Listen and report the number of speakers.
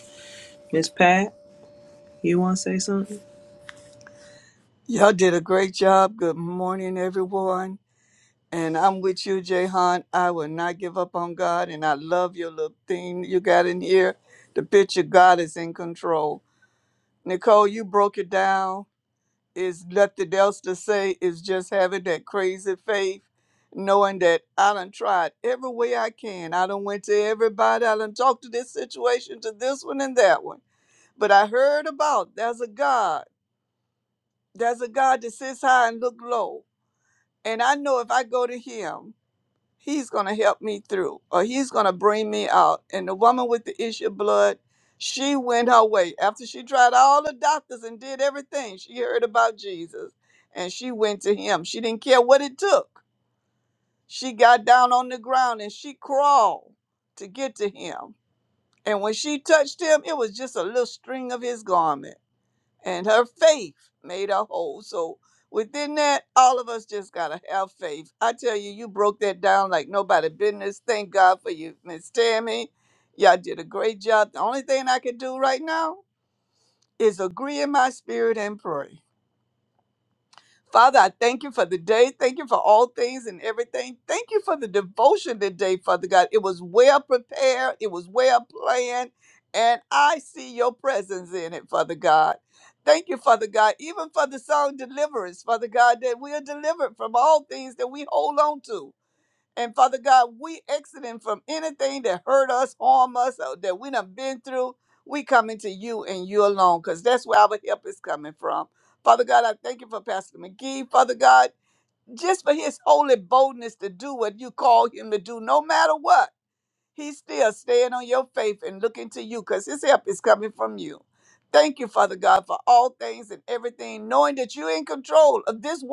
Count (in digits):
2